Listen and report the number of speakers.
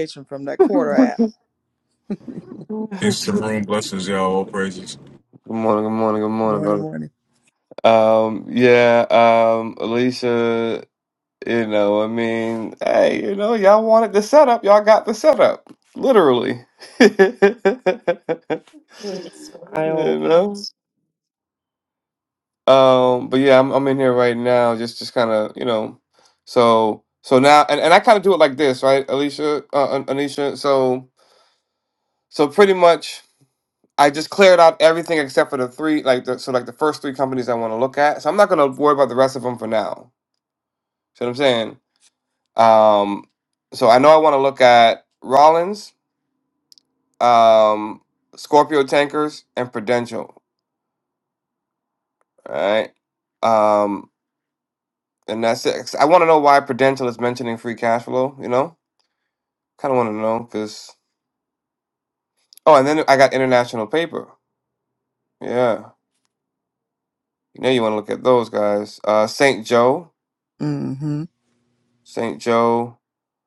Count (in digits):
4